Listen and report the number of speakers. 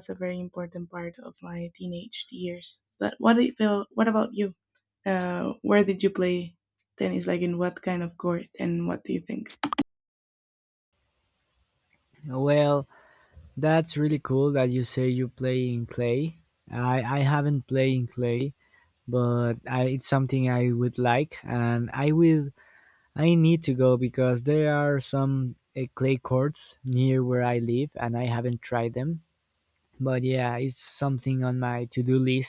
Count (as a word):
two